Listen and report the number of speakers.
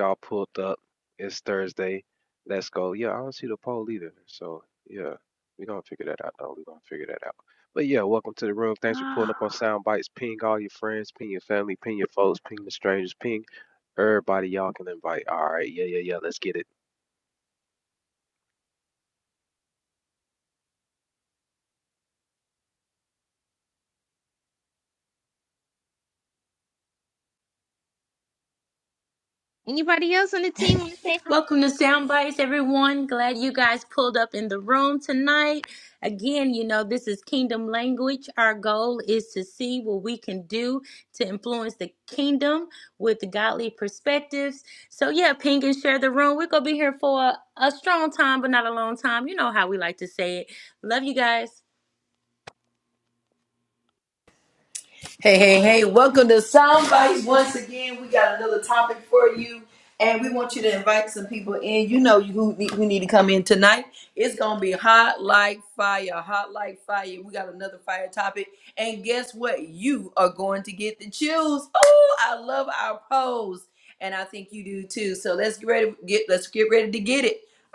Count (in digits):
4